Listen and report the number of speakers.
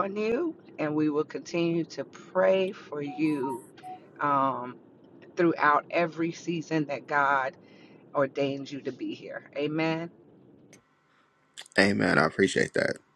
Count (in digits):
2